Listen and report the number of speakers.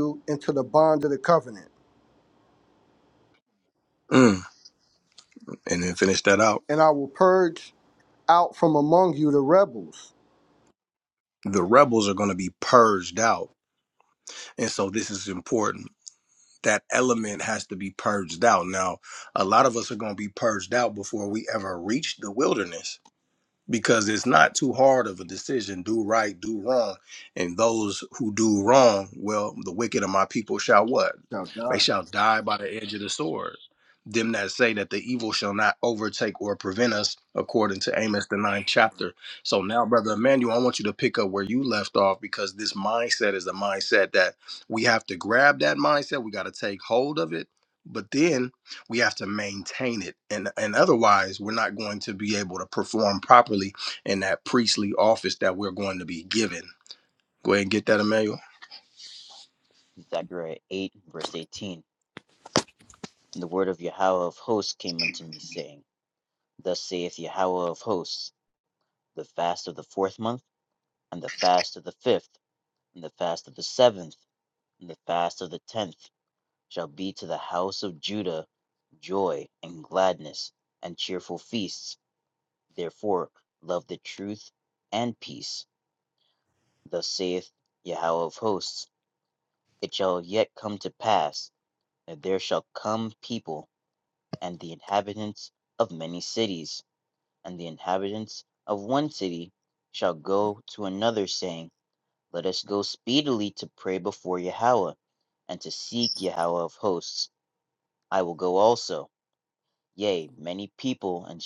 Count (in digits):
3